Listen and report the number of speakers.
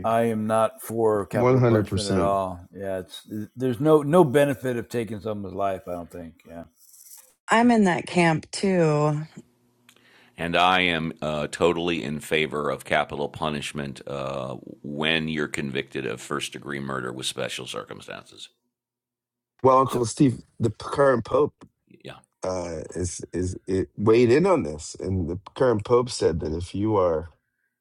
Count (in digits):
4